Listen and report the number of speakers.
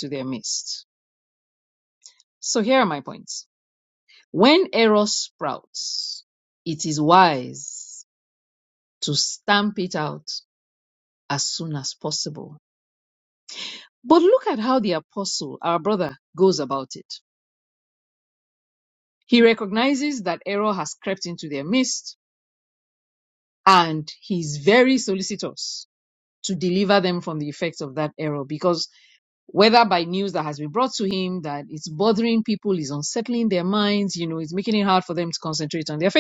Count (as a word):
one